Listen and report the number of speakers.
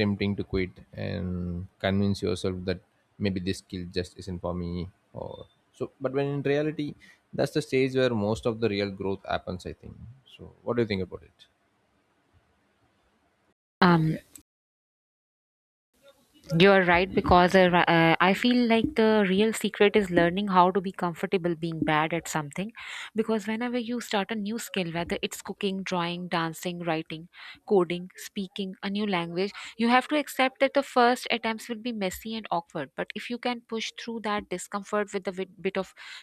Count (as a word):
two